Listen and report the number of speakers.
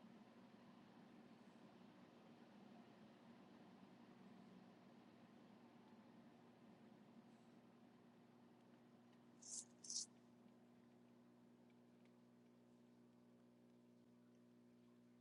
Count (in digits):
0